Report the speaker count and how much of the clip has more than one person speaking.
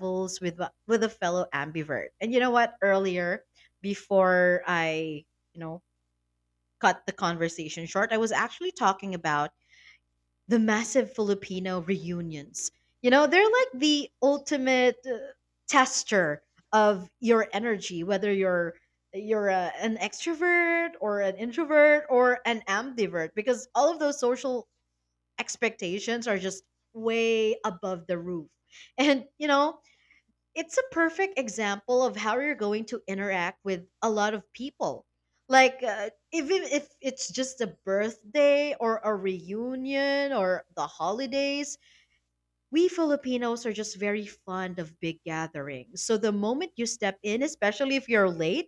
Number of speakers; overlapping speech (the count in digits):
1, no overlap